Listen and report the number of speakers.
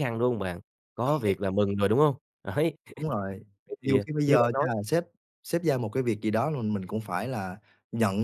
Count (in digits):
2